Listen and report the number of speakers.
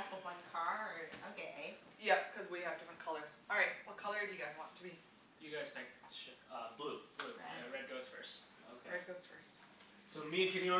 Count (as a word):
four